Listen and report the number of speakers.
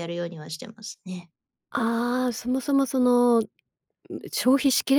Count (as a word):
two